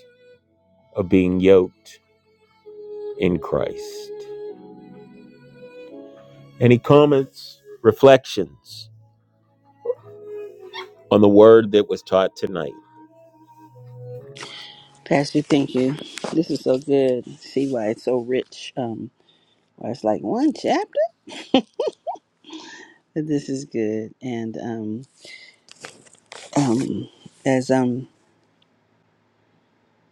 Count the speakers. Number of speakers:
2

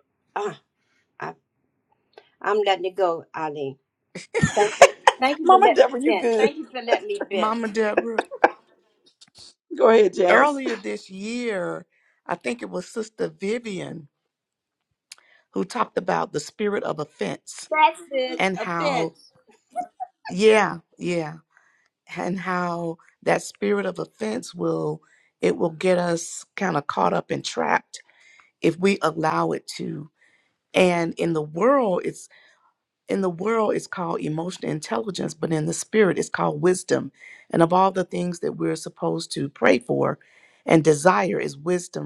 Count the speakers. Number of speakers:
3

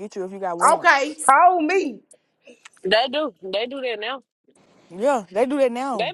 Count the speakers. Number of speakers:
3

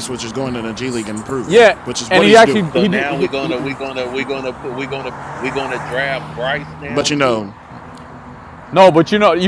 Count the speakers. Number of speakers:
3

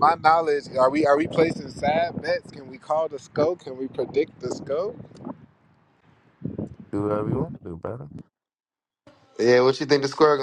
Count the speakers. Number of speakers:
3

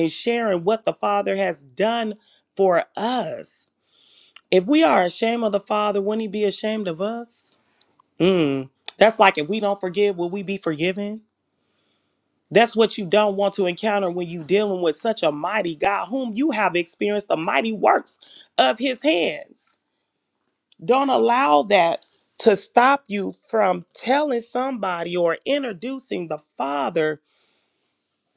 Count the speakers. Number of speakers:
1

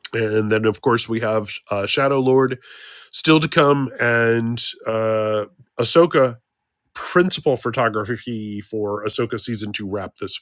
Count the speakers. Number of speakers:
1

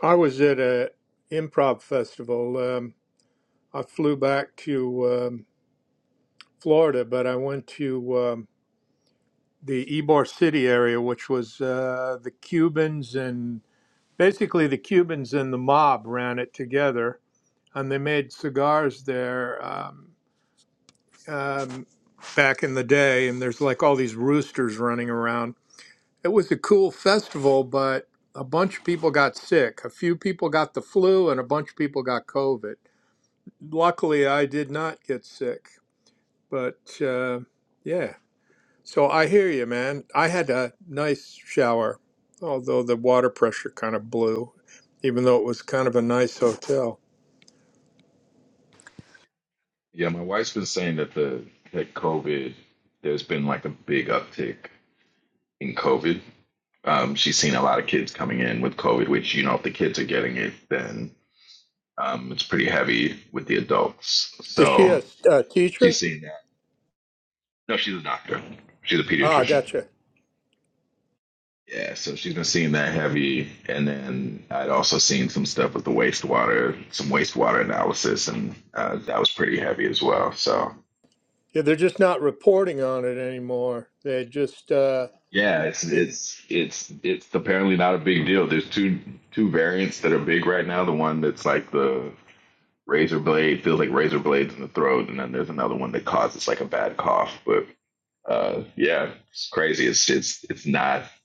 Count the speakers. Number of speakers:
2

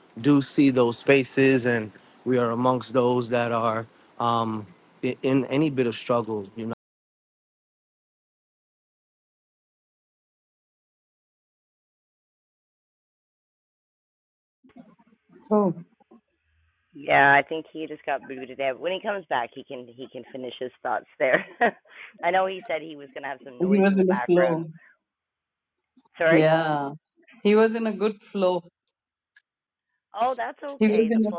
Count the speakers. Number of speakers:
3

